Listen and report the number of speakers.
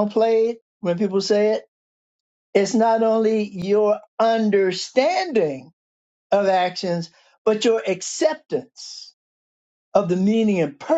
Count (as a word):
one